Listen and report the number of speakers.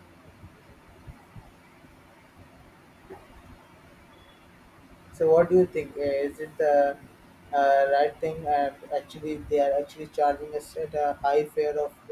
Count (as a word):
one